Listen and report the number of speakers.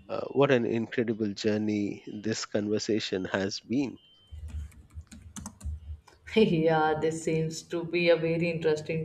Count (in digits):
2